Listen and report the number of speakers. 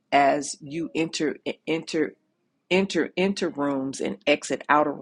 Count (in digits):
1